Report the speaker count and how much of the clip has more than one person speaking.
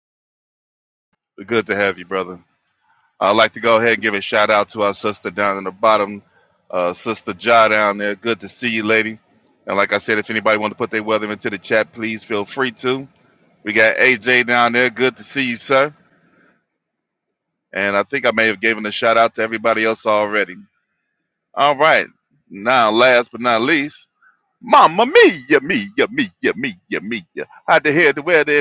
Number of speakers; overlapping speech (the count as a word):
one, no overlap